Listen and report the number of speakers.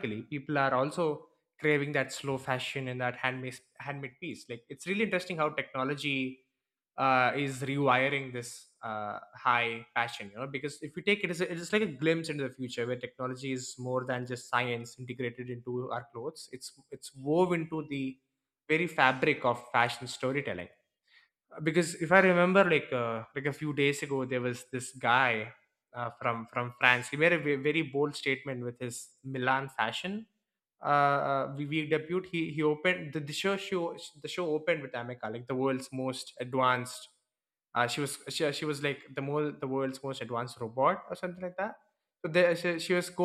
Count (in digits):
1